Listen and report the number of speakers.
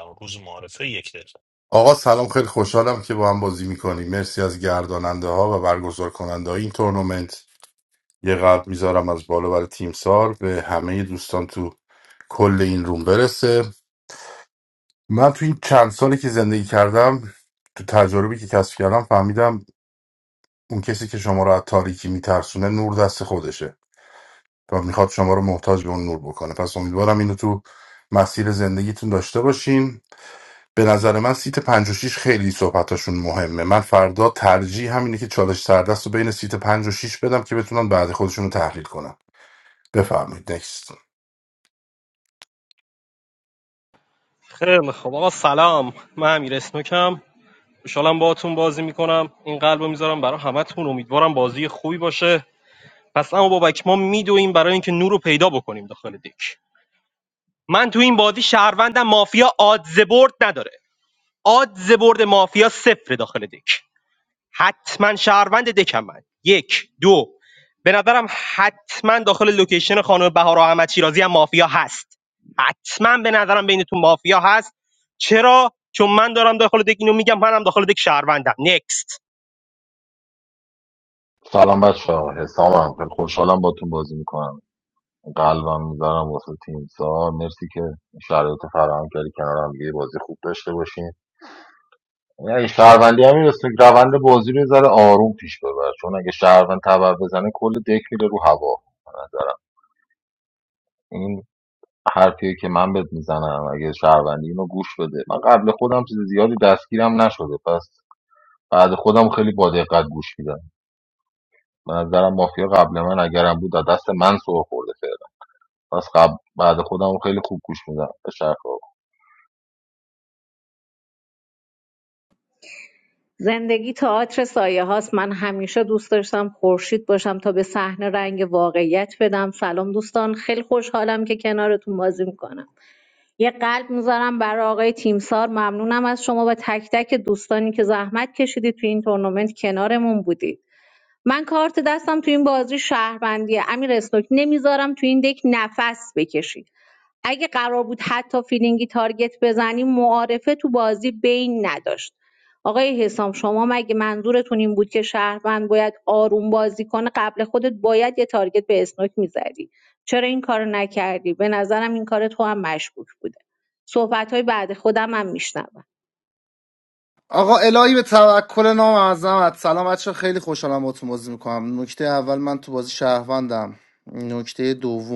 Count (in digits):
6